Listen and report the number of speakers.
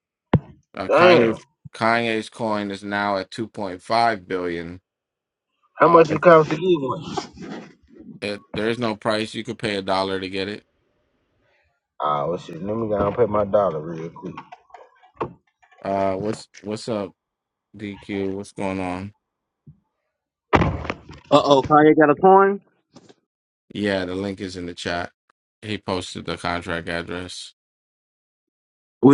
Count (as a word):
three